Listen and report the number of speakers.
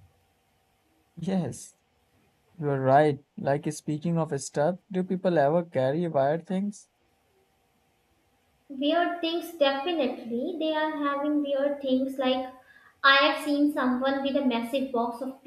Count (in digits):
2